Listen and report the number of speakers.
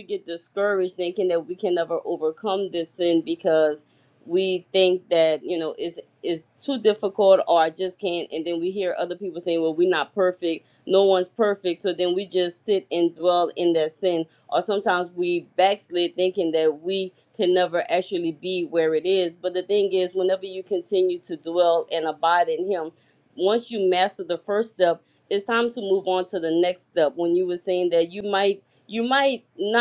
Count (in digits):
1